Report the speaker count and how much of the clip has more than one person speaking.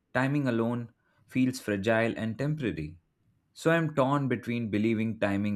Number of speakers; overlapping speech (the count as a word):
one, no overlap